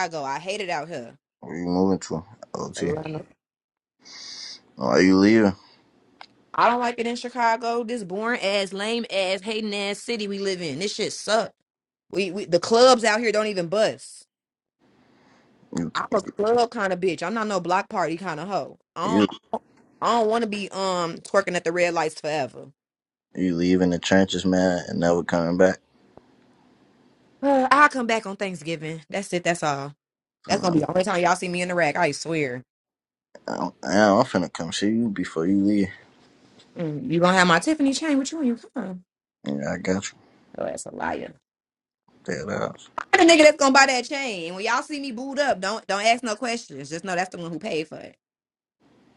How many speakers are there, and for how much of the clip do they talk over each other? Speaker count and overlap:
two, about 1%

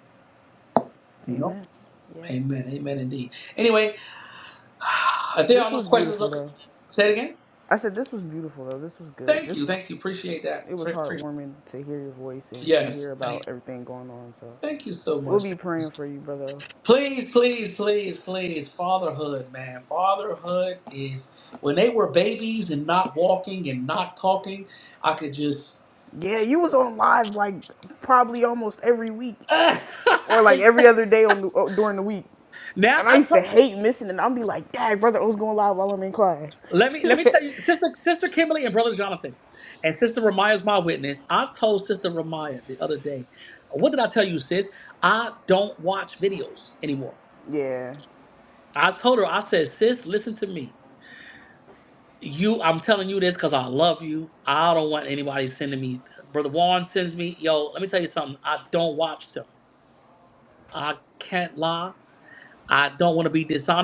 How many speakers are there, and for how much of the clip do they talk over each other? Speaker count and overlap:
two, about 6%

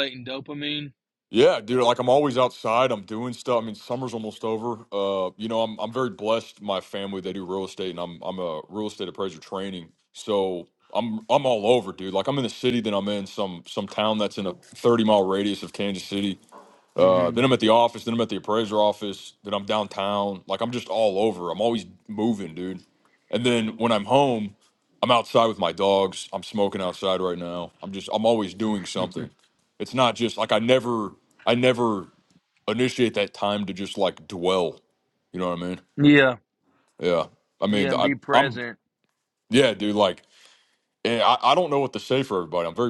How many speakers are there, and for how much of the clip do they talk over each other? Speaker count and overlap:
two, about 3%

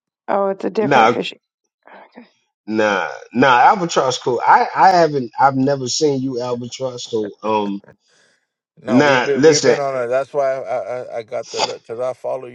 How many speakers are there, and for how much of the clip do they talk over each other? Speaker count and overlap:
three, about 10%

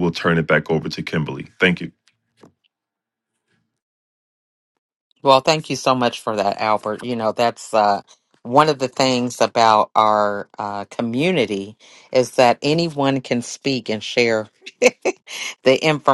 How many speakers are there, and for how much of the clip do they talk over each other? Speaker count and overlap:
two, no overlap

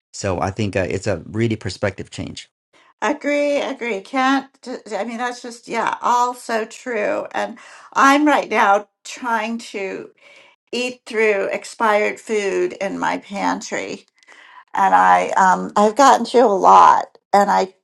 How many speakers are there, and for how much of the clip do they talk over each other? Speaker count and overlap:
two, no overlap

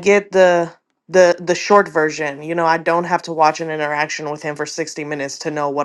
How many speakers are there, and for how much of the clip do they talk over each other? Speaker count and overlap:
one, no overlap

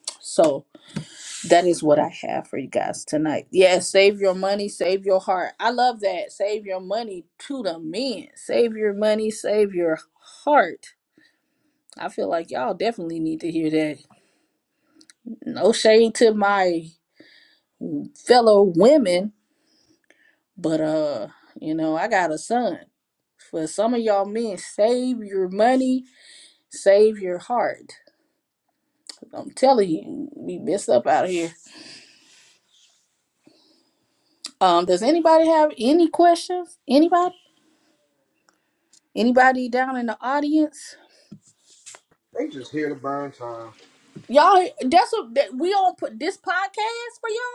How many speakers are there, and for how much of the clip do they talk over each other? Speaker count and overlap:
two, no overlap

